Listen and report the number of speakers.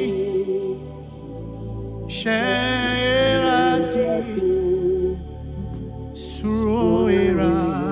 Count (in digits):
2